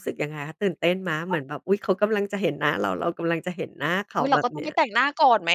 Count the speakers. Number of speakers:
2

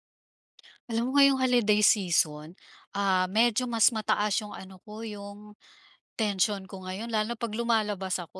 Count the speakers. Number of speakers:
1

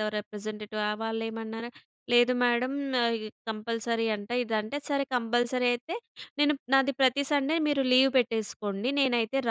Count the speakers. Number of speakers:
1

